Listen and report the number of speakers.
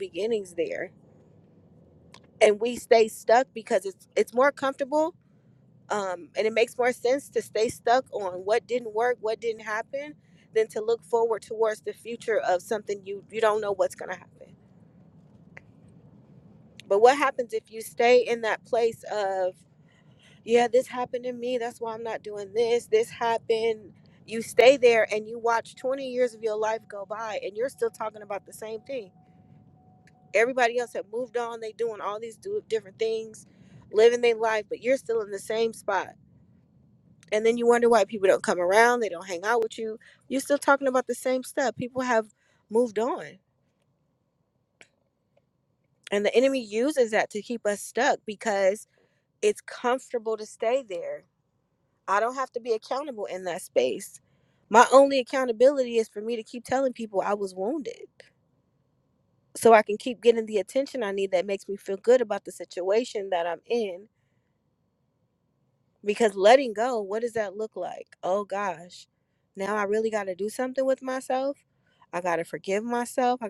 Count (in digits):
1